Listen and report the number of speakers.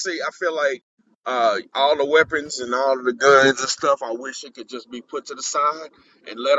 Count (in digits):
1